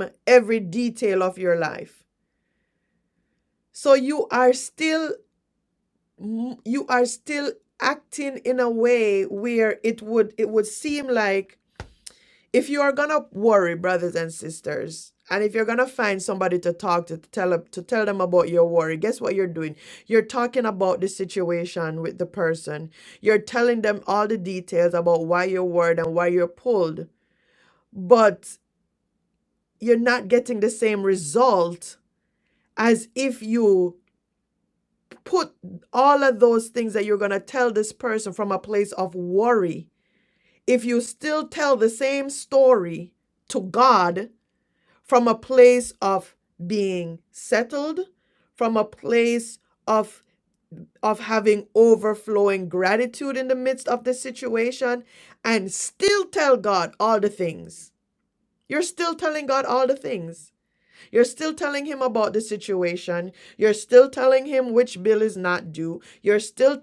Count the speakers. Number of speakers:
1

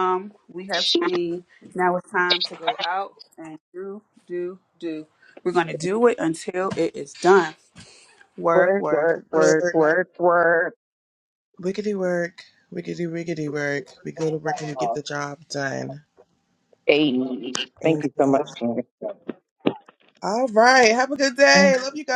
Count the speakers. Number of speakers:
3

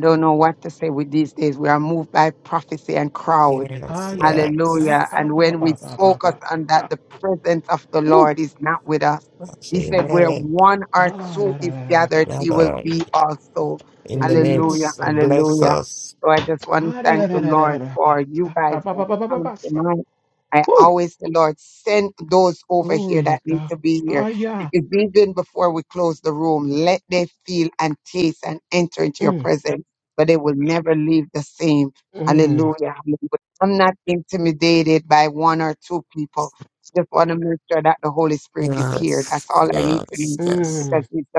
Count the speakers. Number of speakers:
3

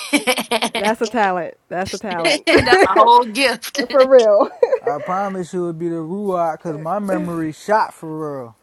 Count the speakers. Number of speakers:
3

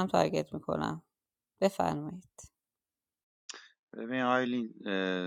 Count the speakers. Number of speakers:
2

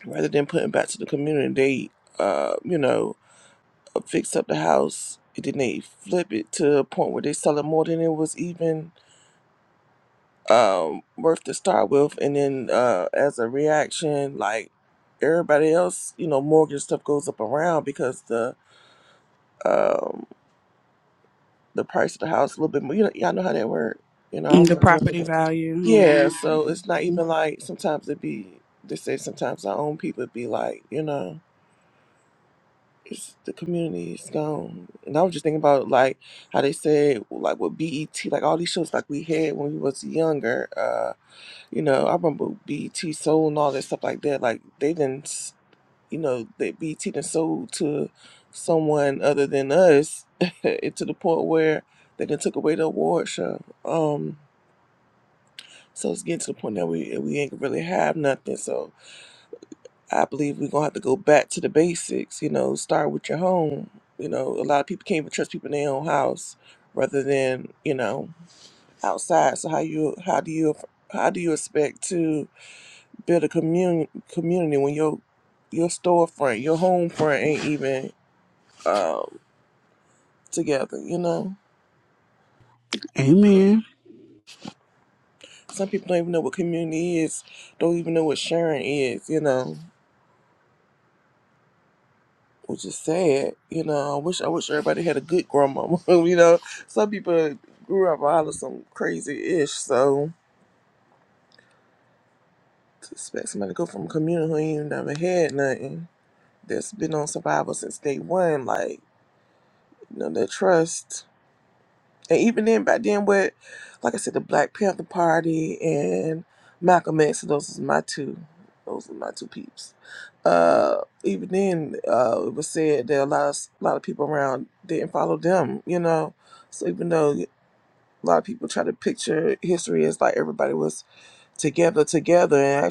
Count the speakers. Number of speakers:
2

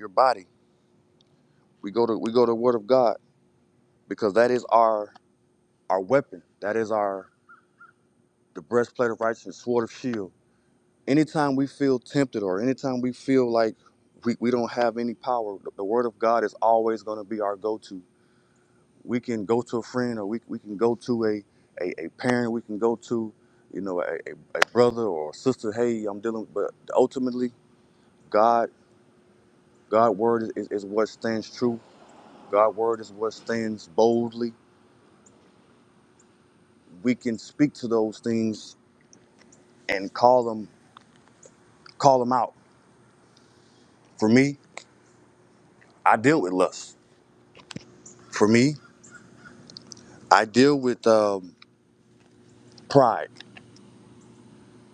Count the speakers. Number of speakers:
1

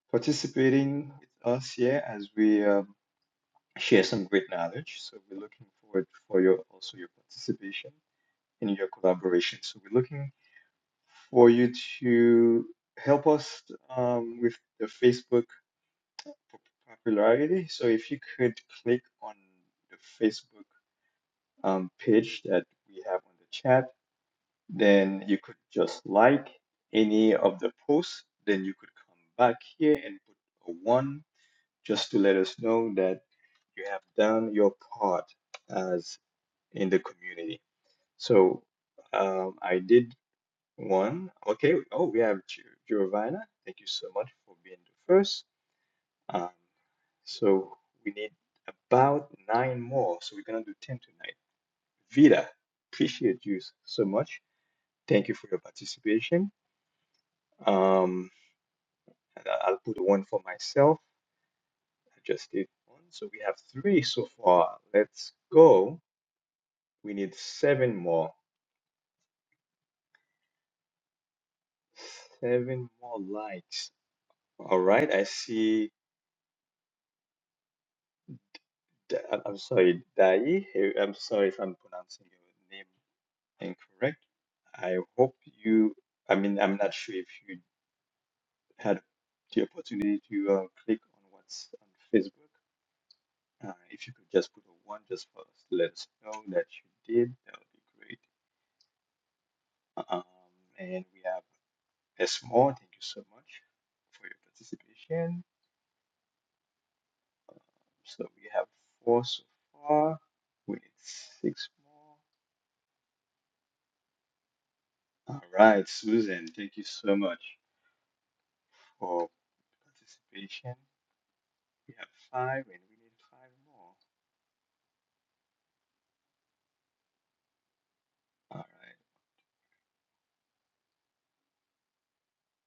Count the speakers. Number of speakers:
1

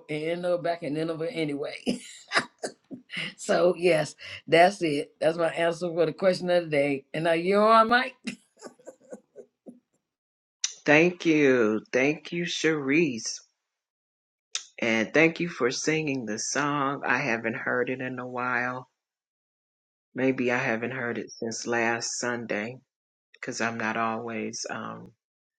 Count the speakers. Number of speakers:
2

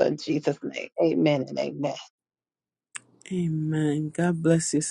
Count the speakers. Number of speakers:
2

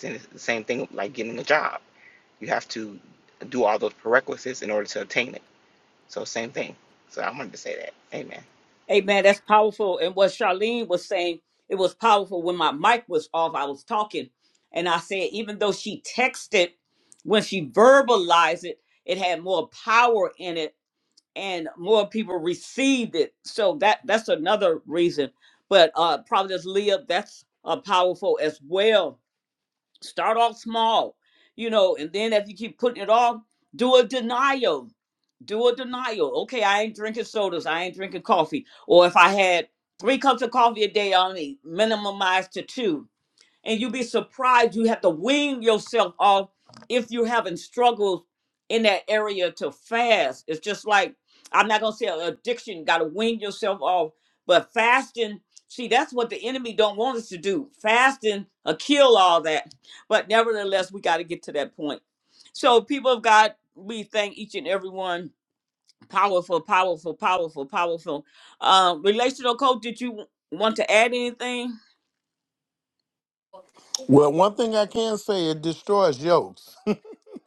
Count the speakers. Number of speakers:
3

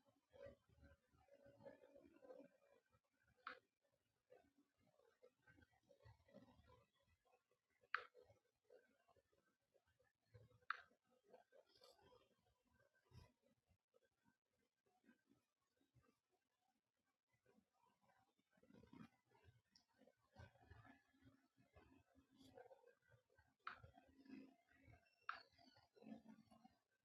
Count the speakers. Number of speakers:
0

